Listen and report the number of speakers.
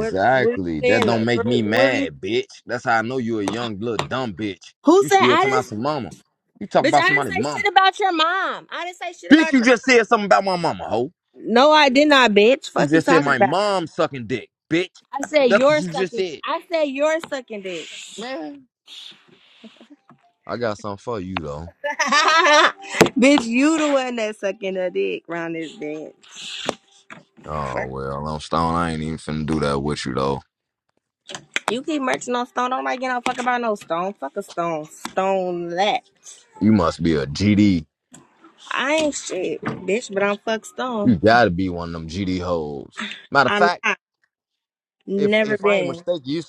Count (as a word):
two